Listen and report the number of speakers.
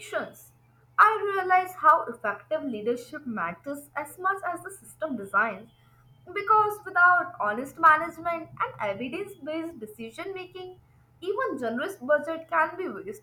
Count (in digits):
1